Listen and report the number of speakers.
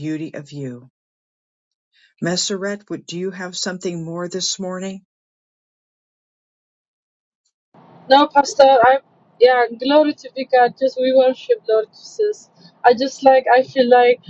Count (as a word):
two